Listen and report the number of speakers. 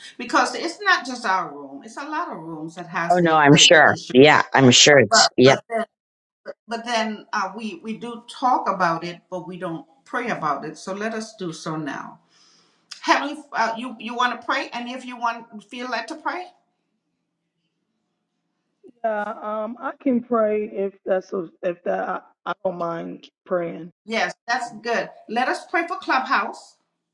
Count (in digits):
3